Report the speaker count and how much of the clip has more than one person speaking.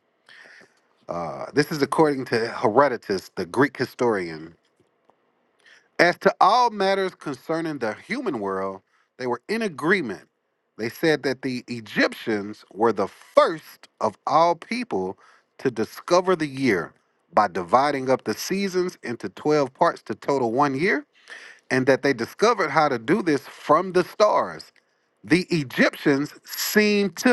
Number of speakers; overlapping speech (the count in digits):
1, no overlap